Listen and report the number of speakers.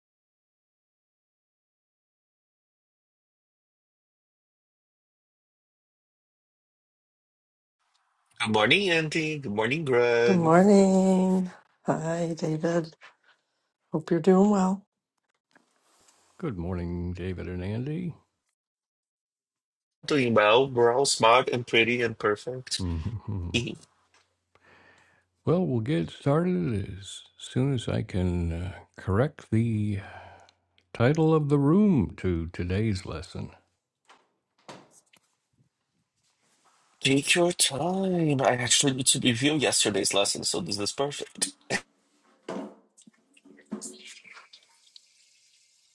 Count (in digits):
3